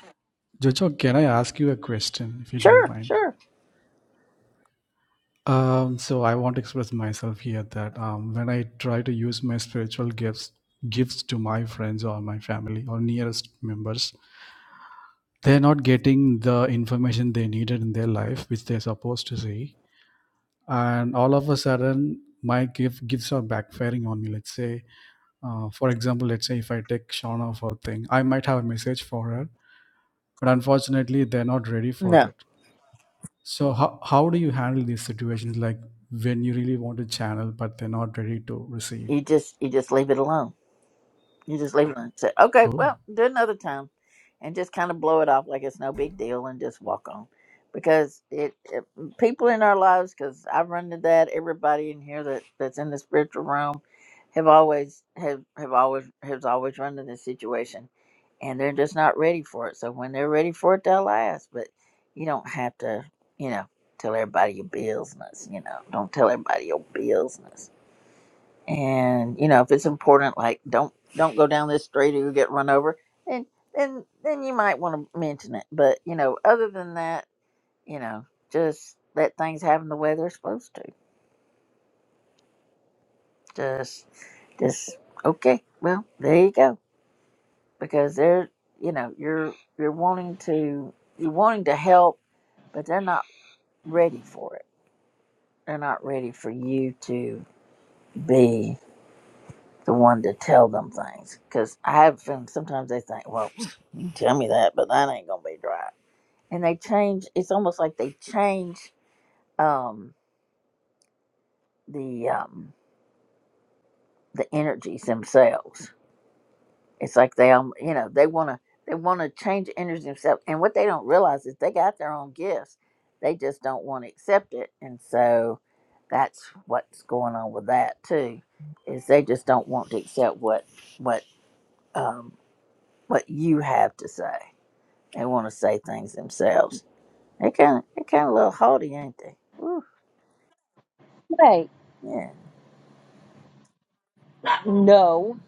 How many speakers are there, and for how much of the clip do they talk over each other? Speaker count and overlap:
three, about 1%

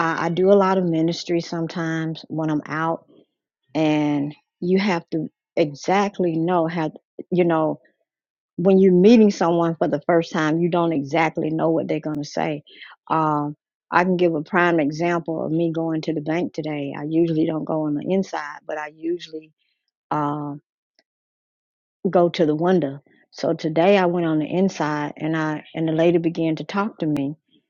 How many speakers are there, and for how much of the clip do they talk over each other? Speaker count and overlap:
one, no overlap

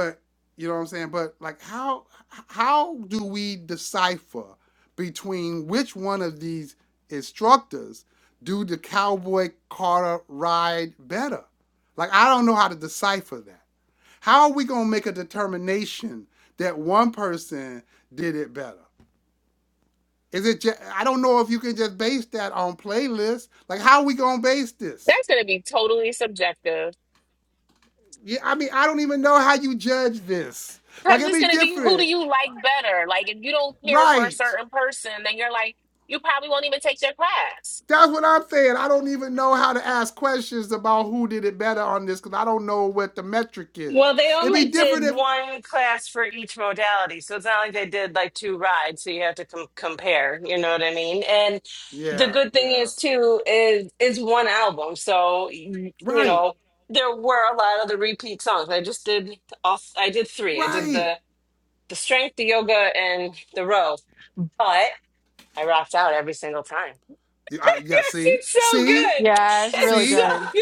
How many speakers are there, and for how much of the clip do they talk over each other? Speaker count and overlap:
four, about 9%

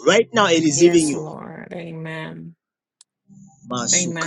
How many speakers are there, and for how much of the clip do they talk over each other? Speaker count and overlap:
two, about 22%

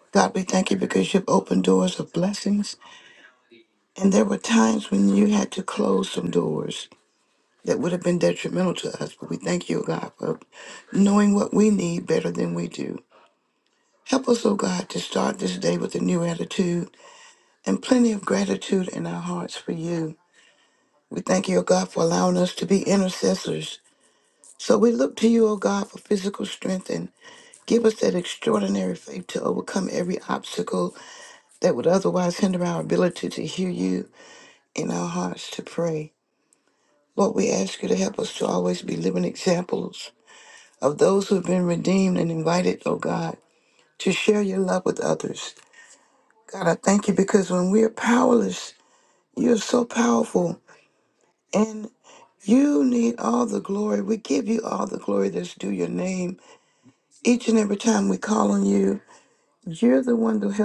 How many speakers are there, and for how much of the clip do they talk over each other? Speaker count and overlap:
one, no overlap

